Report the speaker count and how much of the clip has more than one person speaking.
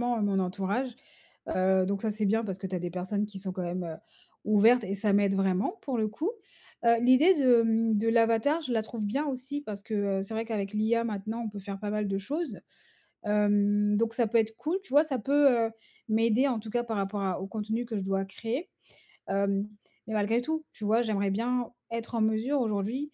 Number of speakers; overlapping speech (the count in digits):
1, no overlap